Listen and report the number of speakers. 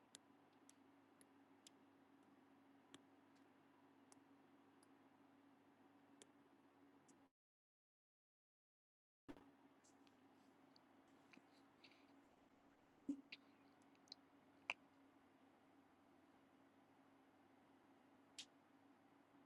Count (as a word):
zero